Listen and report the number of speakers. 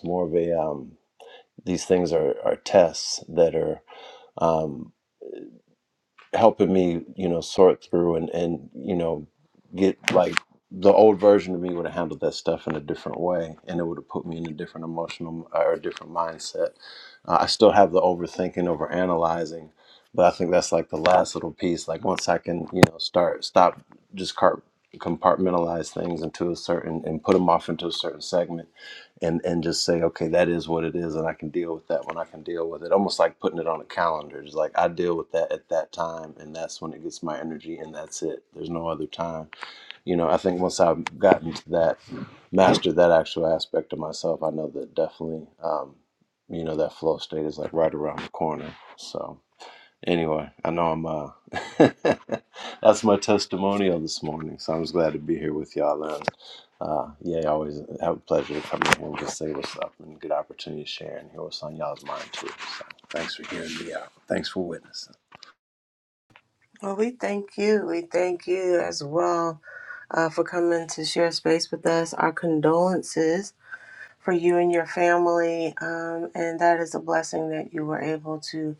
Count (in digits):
2